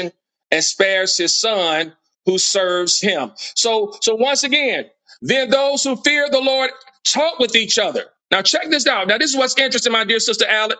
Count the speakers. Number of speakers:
1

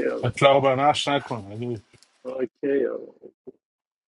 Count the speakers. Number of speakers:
2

